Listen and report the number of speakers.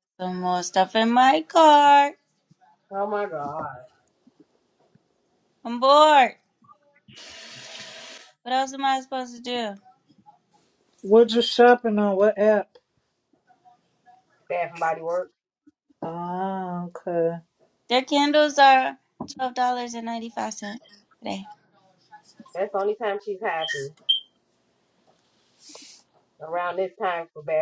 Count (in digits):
3